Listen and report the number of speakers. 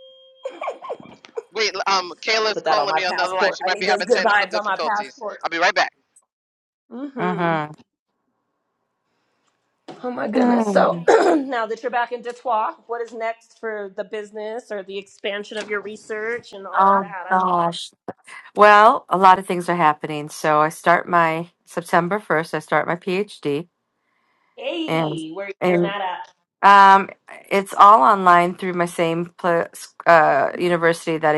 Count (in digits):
3